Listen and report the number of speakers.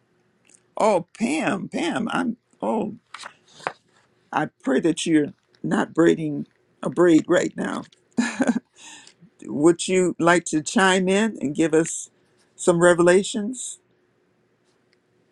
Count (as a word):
one